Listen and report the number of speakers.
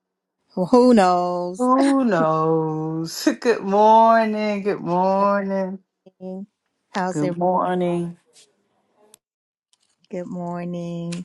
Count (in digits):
3